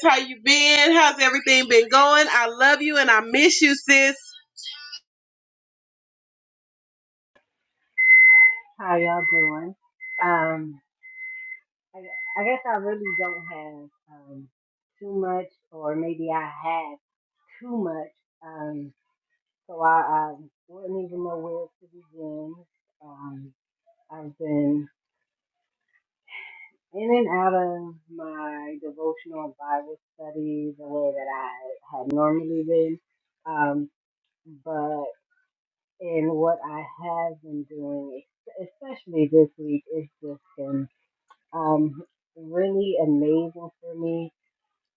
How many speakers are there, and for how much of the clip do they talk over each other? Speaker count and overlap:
2, no overlap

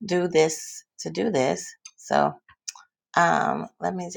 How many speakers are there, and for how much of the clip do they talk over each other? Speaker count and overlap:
1, no overlap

